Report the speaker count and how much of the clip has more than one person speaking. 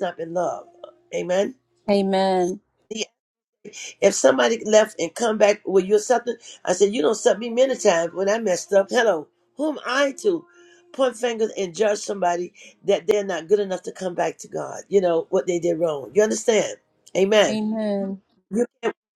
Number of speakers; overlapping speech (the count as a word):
two, about 1%